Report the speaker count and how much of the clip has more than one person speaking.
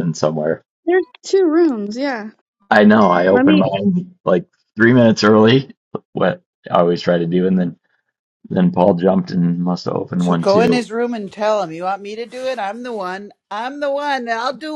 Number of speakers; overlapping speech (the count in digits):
3, about 6%